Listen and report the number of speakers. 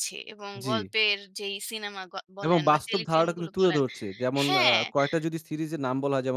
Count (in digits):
2